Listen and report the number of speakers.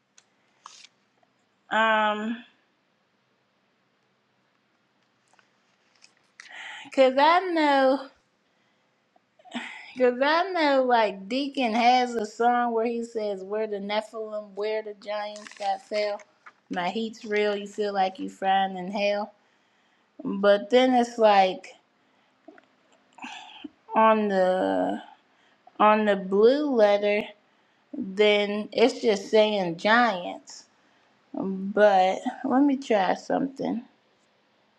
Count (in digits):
1